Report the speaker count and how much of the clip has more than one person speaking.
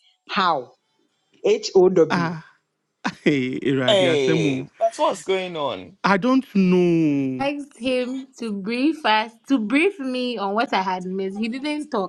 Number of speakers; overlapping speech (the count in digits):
4, about 9%